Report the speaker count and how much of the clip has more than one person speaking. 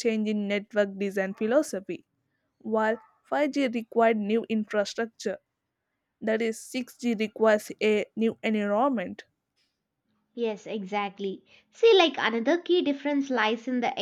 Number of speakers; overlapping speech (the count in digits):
2, no overlap